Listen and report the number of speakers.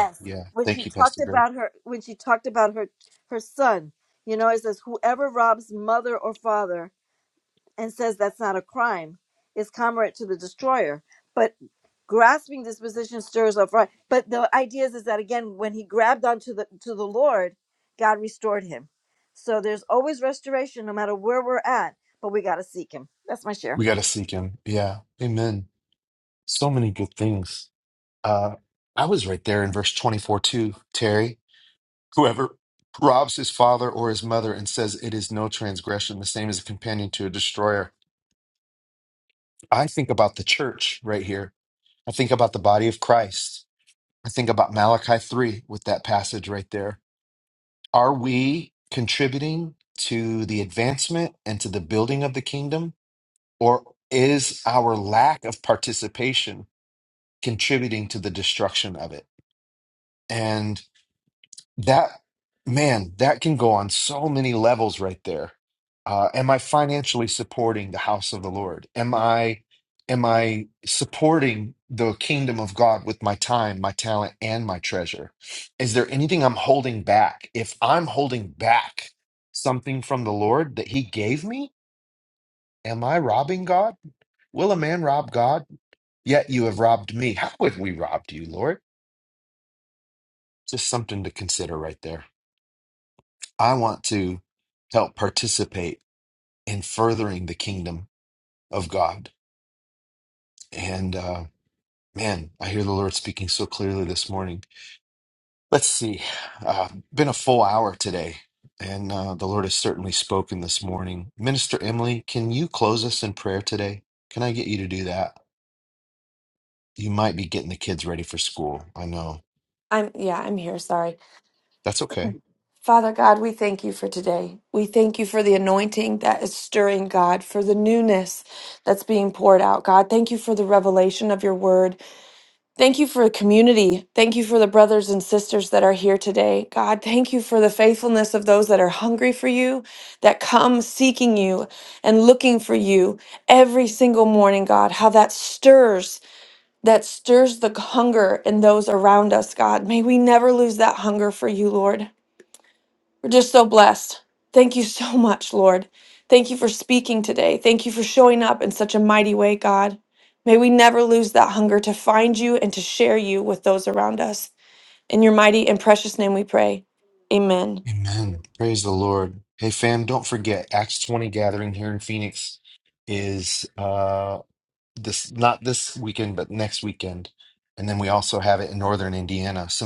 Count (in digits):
3